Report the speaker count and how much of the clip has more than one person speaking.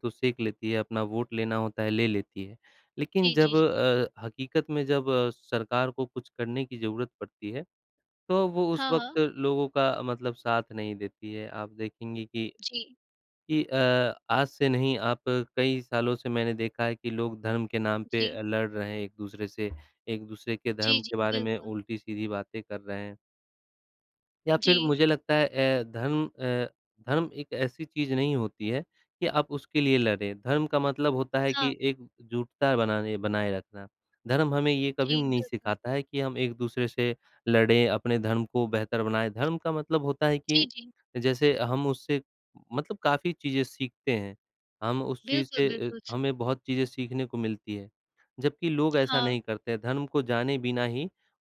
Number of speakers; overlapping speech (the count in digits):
2, about 9%